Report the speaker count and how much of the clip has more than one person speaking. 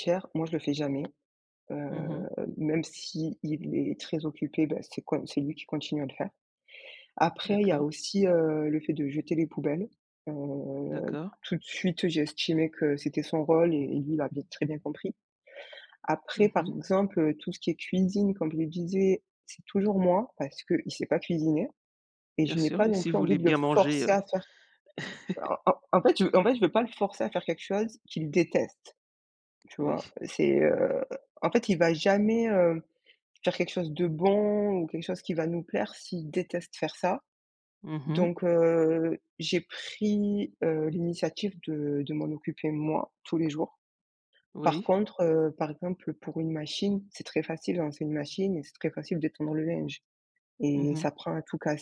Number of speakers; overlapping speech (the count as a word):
two, about 7%